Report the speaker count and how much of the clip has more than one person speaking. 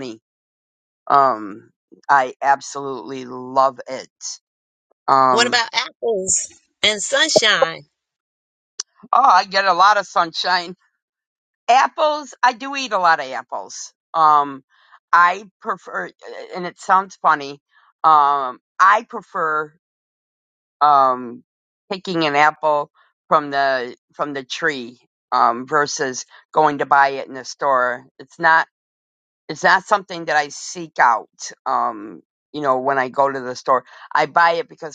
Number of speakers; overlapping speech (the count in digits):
2, about 1%